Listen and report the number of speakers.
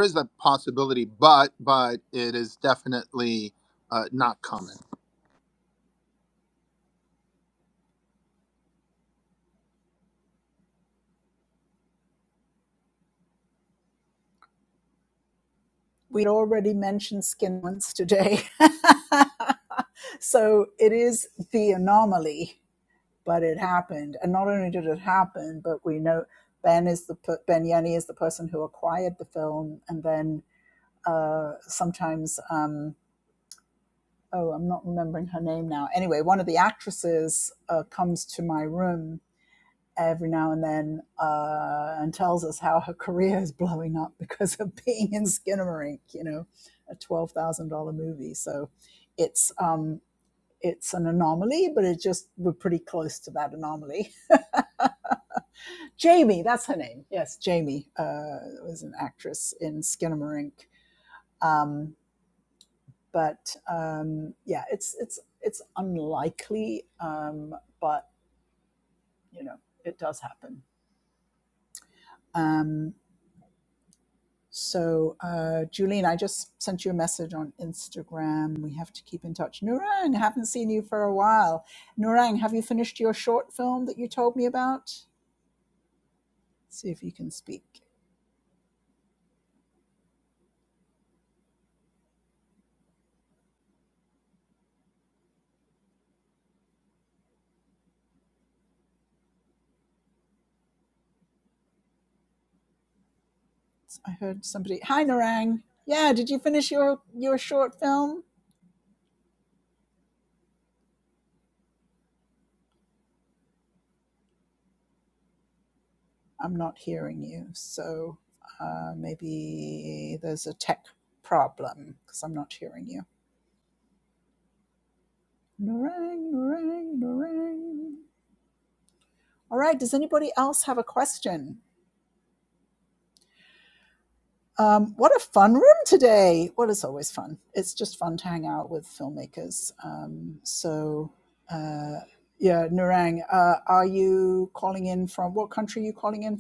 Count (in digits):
2